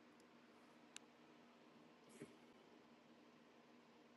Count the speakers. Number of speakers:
0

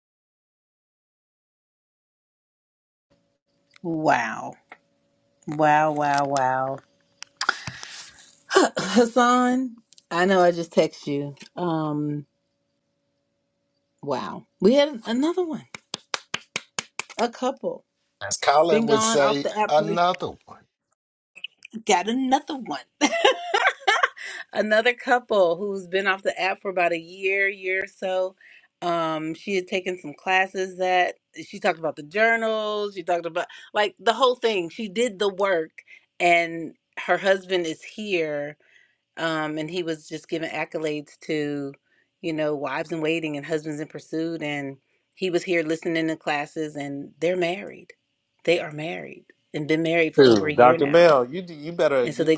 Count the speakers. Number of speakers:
3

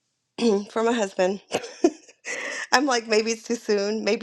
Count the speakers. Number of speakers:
1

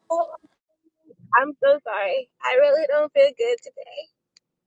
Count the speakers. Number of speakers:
1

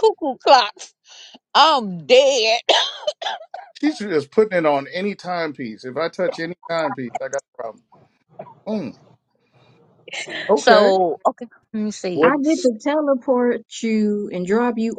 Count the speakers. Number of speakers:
3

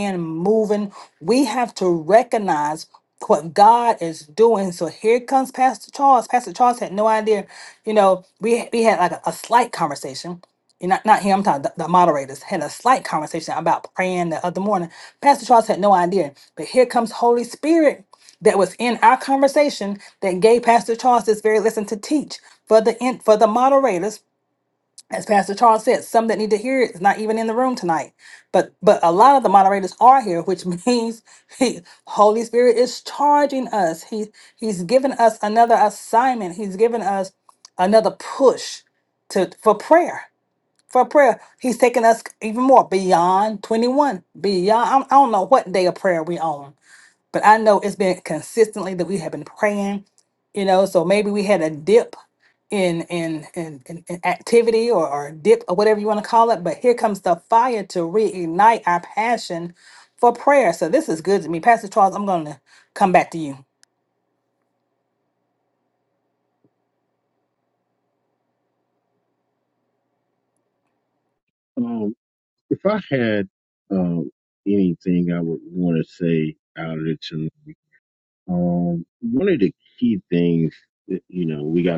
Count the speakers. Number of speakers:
2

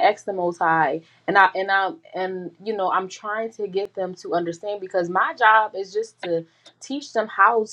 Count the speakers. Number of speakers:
1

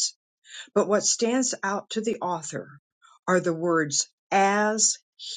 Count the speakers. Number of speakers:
1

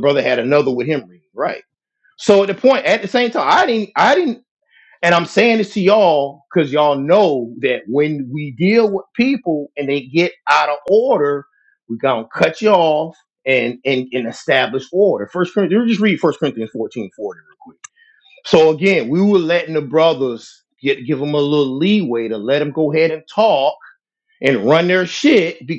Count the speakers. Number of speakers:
1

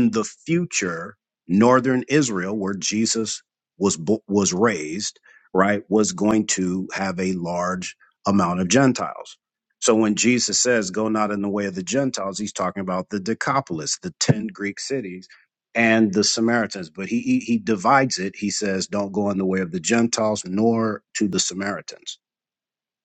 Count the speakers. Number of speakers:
1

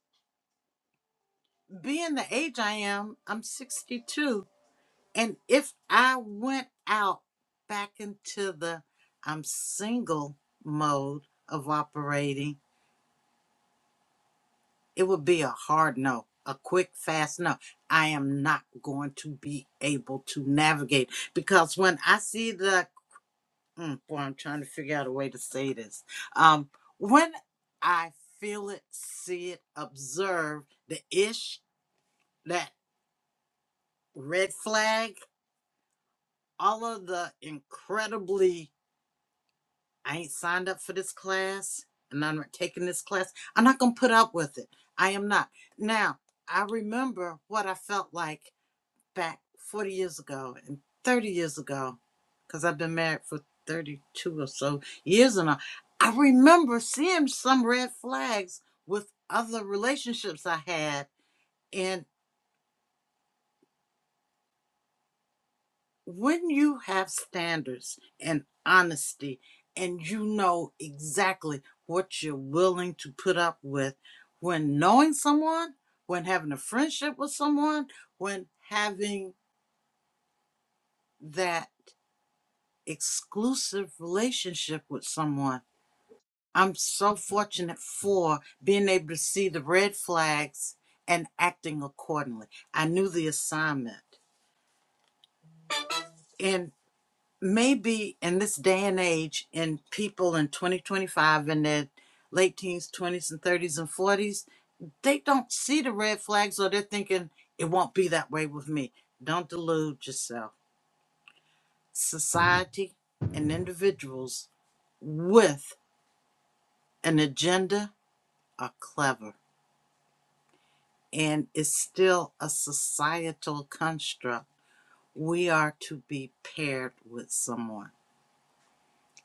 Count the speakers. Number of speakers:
1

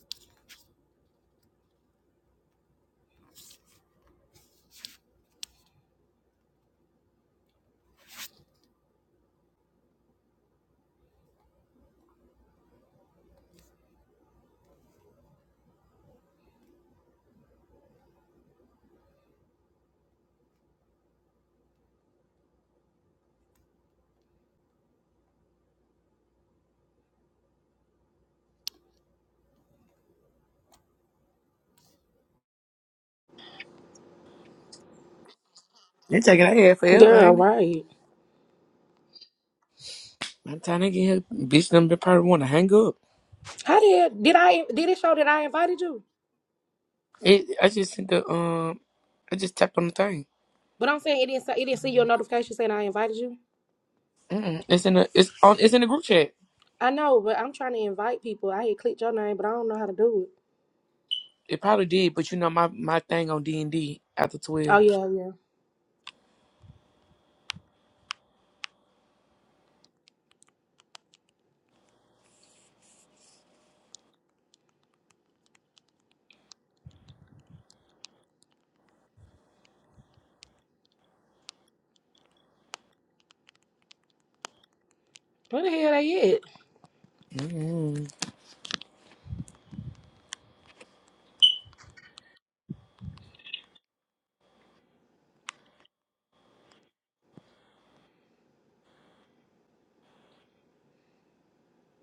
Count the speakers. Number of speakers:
2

